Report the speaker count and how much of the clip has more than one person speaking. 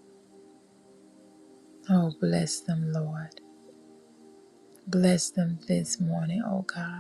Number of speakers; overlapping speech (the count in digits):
1, no overlap